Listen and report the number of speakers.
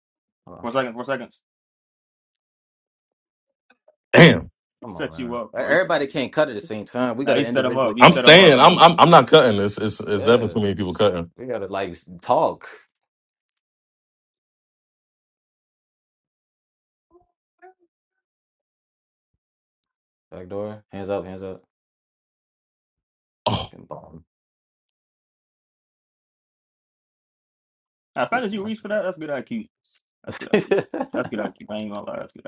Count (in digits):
3